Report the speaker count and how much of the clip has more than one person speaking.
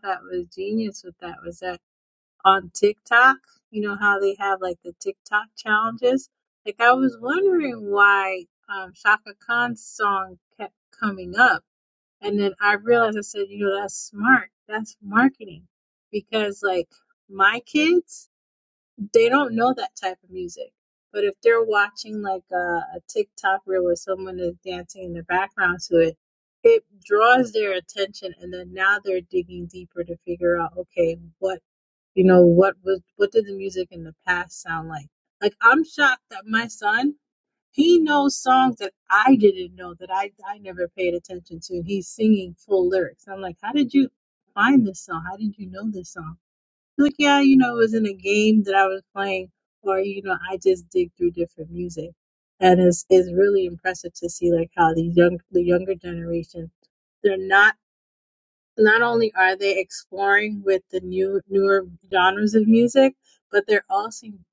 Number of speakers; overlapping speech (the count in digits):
1, no overlap